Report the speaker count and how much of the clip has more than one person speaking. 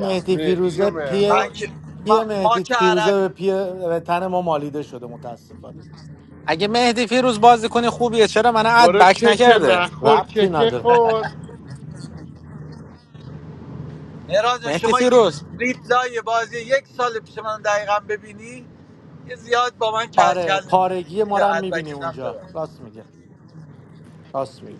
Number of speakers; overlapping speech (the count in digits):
4, about 26%